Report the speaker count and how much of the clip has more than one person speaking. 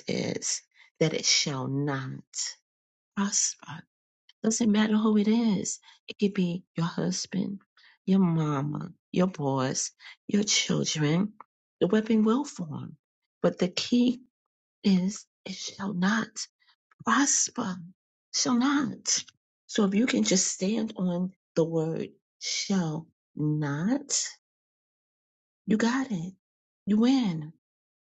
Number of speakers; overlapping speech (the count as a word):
one, no overlap